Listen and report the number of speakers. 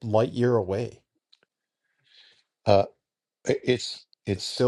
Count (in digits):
2